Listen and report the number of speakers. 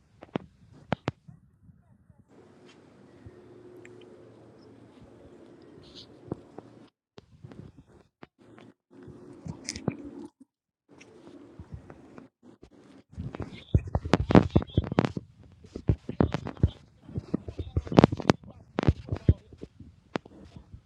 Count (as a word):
zero